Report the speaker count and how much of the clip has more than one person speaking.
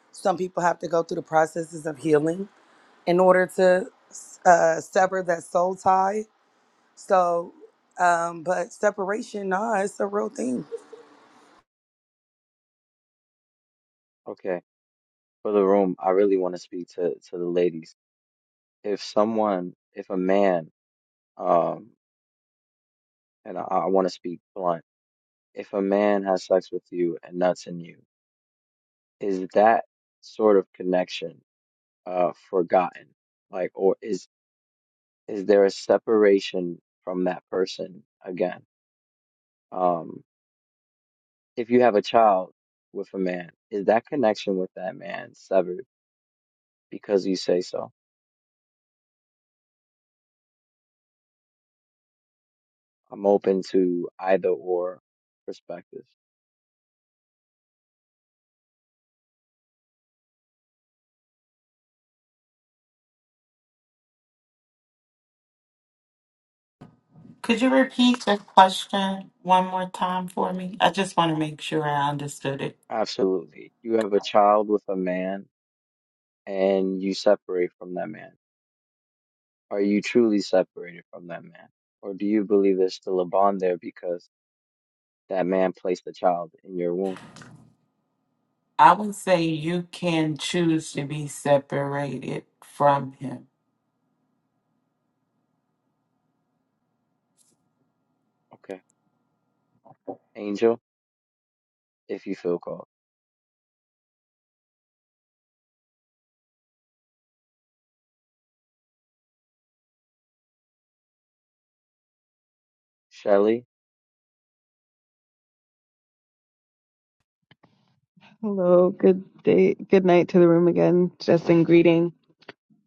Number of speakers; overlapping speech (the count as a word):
four, no overlap